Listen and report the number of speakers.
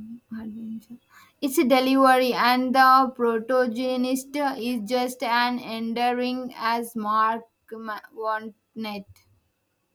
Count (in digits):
1